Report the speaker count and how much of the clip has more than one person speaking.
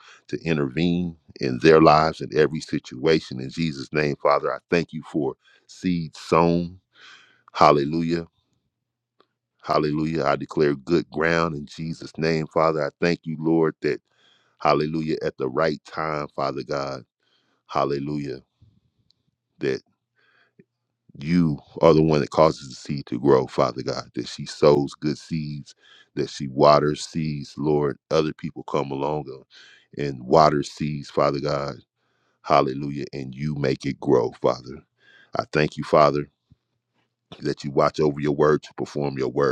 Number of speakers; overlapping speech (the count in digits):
1, no overlap